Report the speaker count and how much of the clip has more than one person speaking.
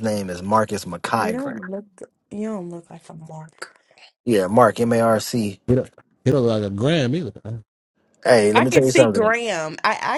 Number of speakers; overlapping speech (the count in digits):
3, about 12%